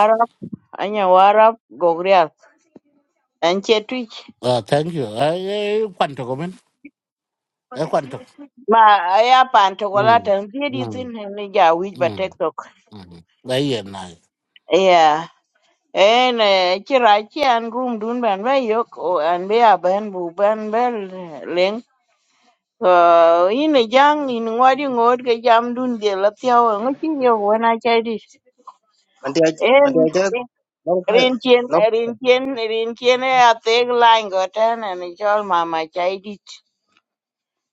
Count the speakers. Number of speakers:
3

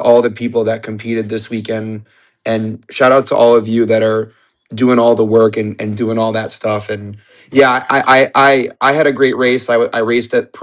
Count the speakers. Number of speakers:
1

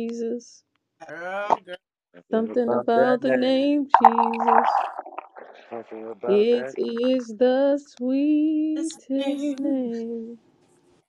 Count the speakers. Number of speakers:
3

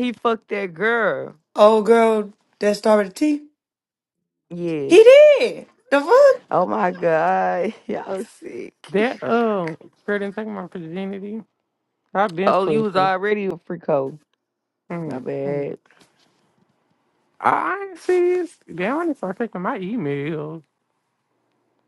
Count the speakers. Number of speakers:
3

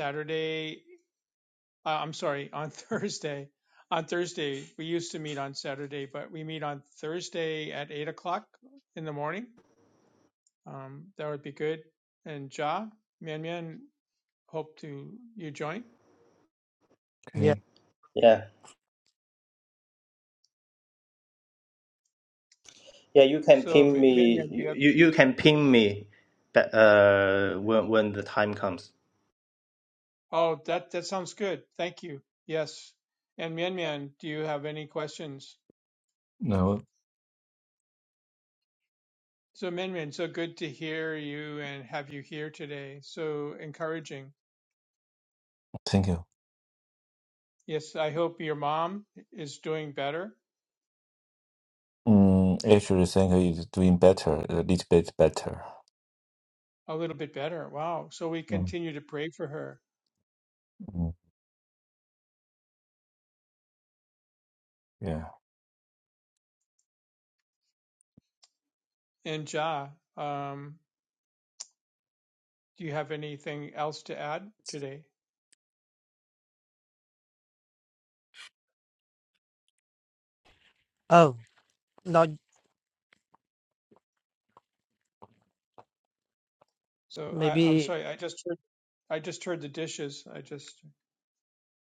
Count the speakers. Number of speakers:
4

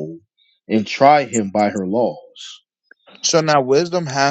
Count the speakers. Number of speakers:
2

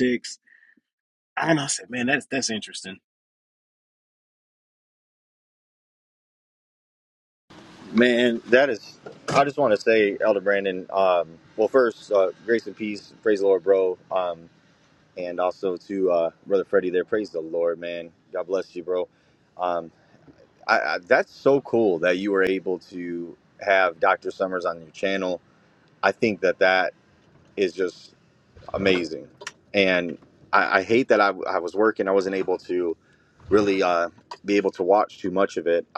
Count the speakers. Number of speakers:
2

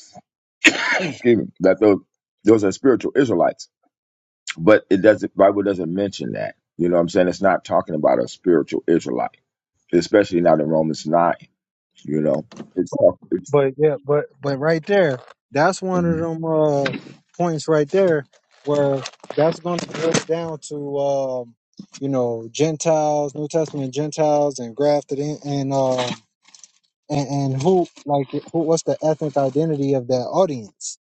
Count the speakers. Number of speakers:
2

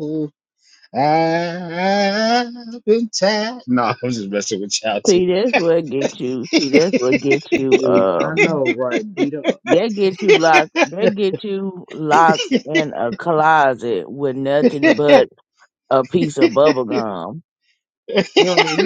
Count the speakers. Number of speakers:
3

